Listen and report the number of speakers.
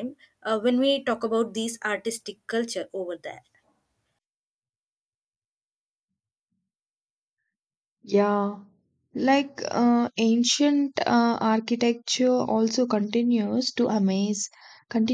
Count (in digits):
2